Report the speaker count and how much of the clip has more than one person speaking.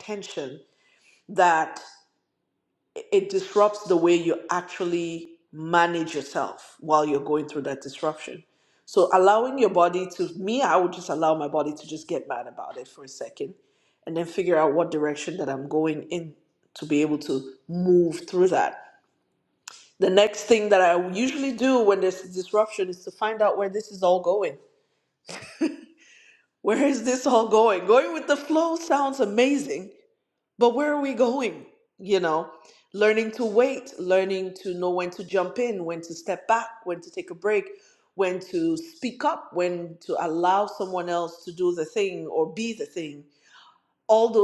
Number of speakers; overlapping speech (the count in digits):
1, no overlap